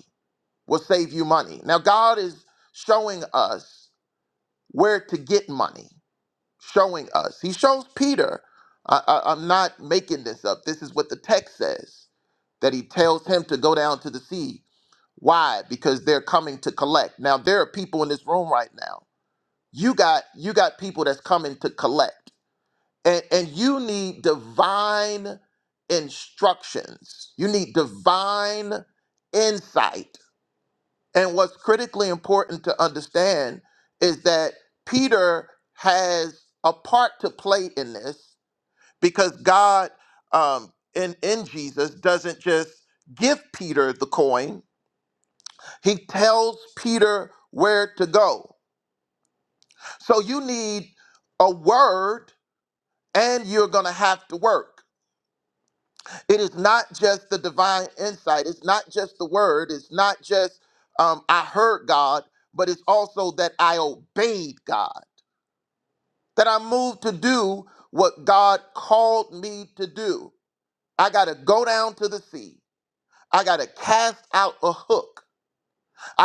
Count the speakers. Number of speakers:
1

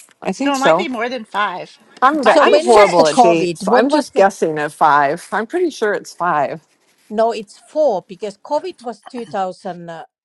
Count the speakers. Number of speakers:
3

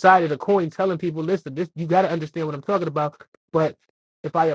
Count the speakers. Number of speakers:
1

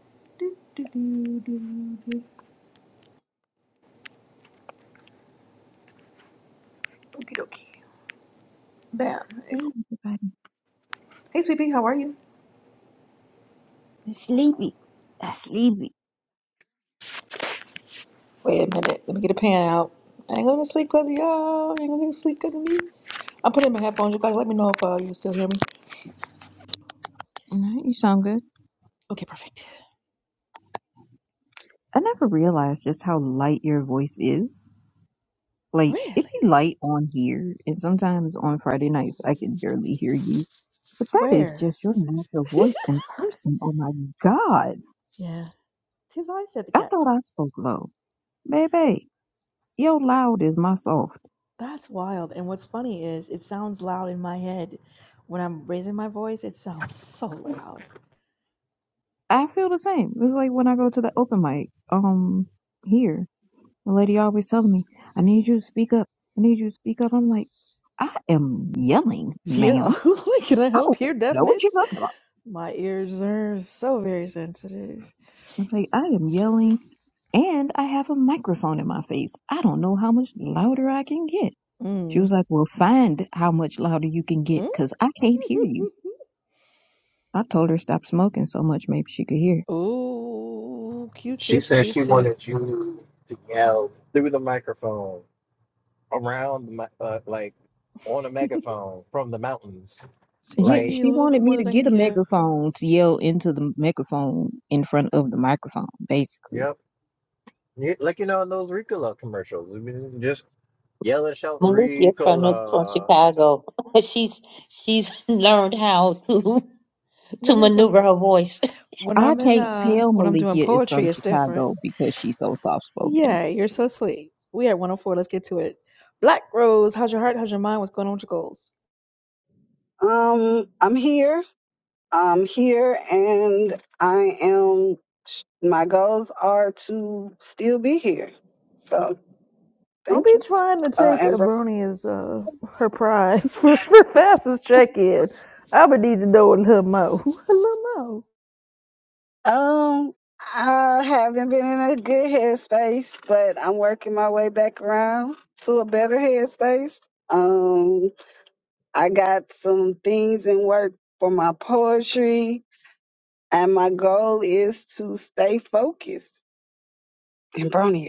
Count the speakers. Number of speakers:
5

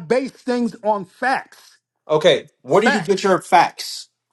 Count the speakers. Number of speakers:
2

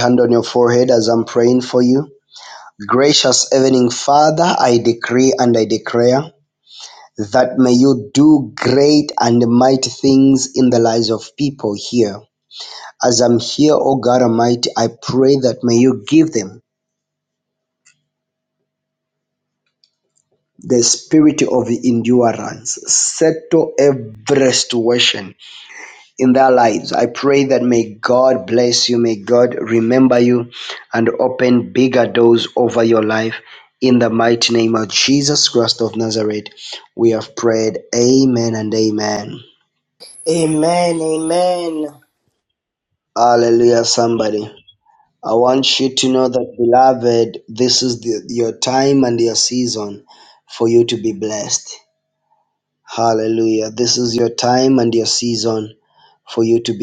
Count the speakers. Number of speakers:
2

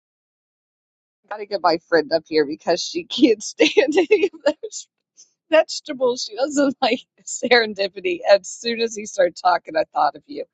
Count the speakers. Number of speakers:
1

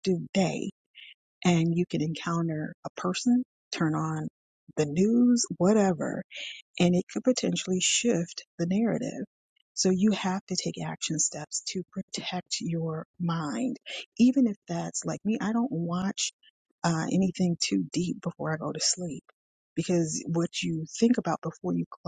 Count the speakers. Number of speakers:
1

